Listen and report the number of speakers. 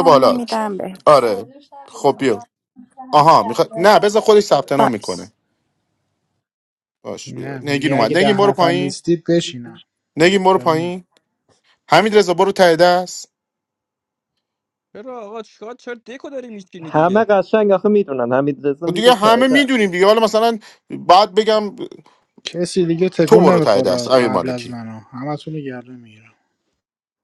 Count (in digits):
5